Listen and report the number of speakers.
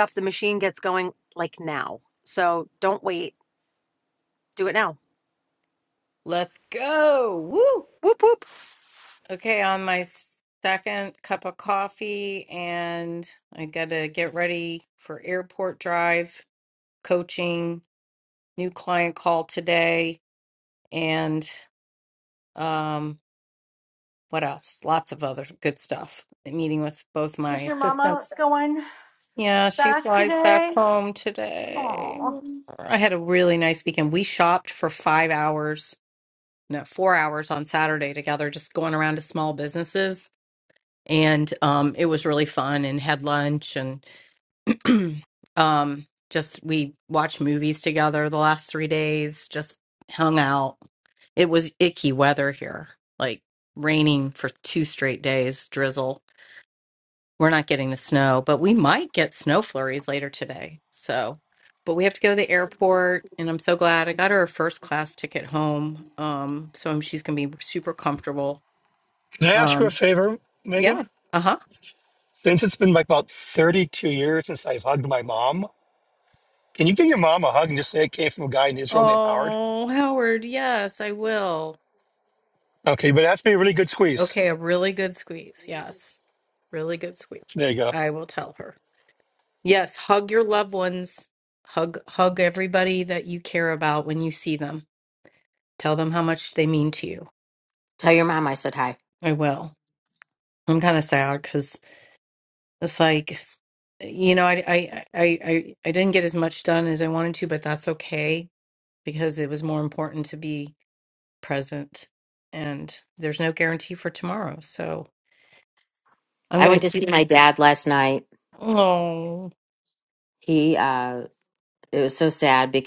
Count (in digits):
5